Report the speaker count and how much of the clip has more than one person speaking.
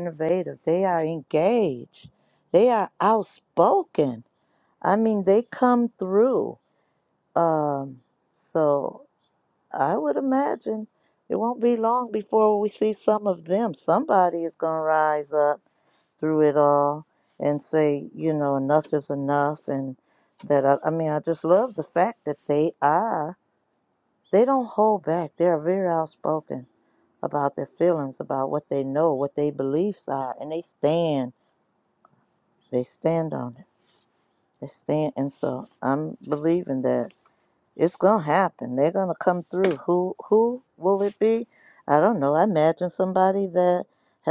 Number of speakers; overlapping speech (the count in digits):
1, no overlap